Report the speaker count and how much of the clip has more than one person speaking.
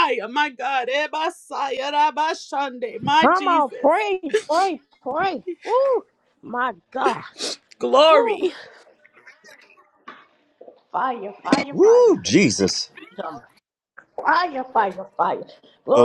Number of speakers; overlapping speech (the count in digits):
3, about 10%